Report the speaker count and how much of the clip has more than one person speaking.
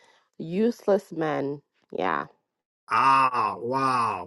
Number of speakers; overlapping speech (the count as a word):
two, no overlap